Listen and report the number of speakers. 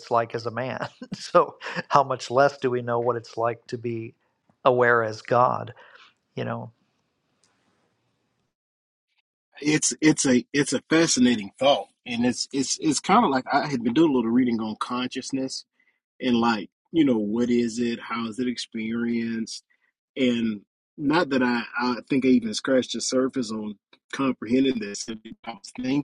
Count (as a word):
two